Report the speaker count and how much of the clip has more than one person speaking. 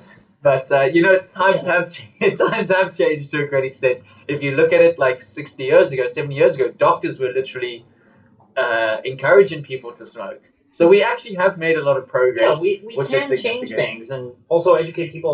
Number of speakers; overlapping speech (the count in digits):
2, about 10%